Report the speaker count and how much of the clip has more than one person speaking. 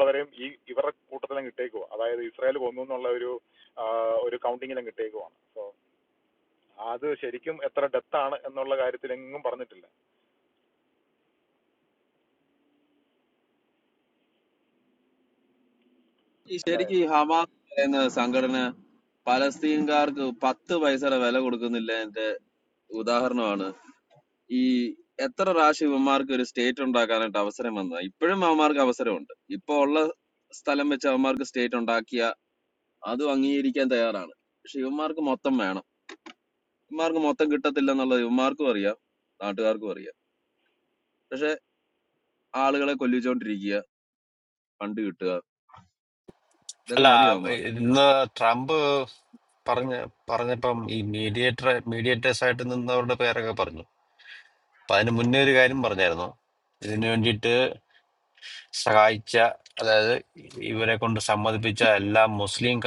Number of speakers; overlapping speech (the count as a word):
three, about 1%